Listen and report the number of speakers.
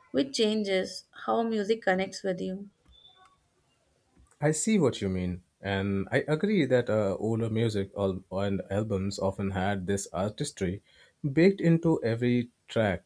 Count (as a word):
two